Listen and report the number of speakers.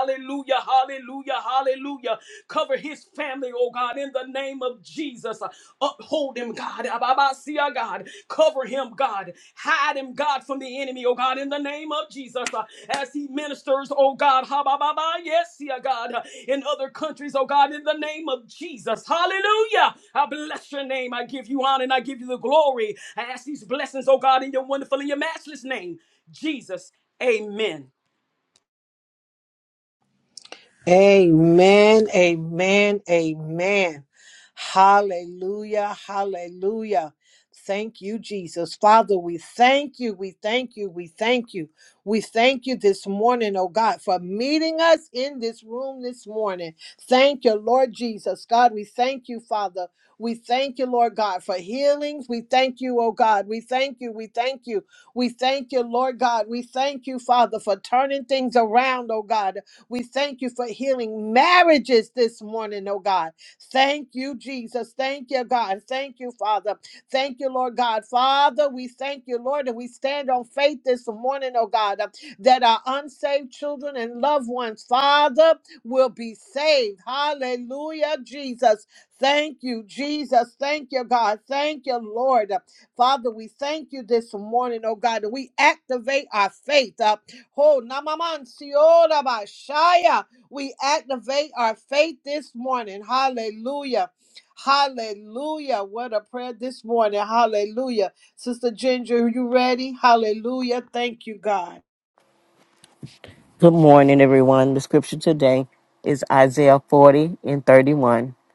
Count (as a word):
three